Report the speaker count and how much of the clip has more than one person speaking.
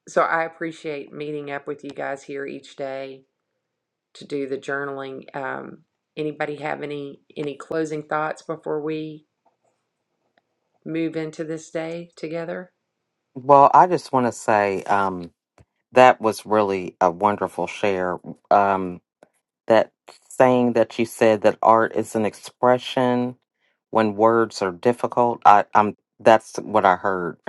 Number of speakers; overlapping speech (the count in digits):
2, no overlap